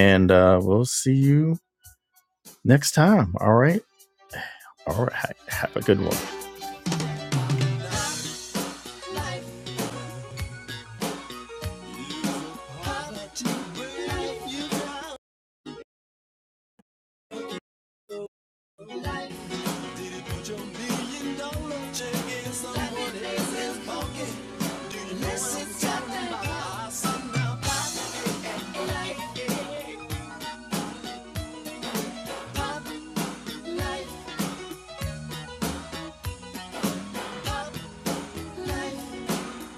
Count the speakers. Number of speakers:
1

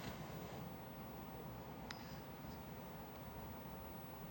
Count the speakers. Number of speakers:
0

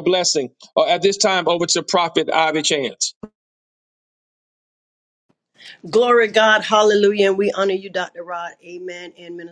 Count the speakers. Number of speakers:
2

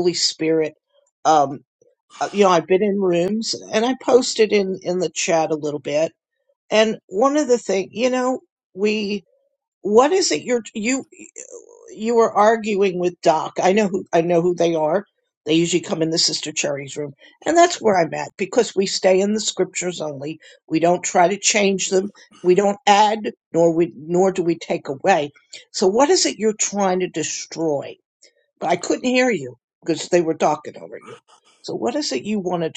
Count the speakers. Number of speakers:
1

